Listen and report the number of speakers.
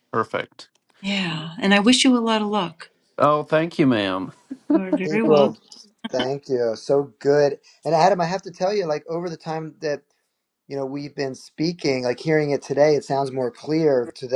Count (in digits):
3